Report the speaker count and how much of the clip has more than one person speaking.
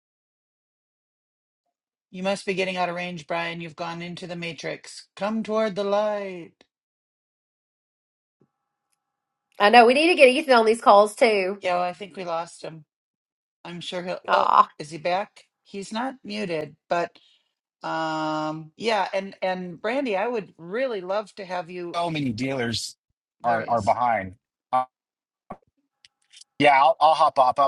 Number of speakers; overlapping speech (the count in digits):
3, about 2%